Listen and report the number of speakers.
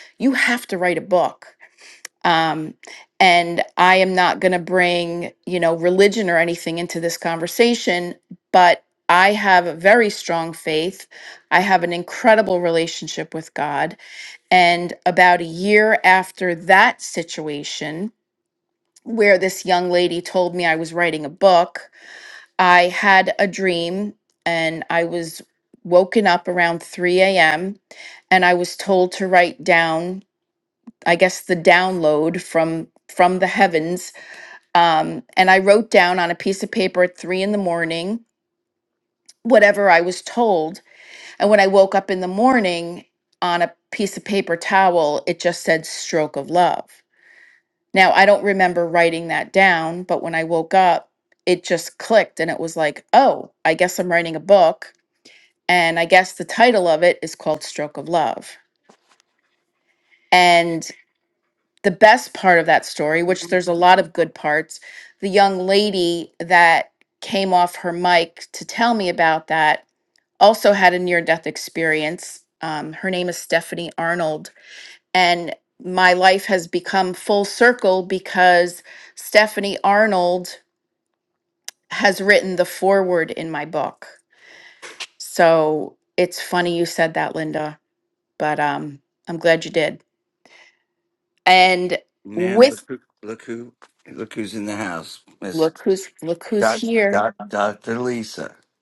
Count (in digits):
2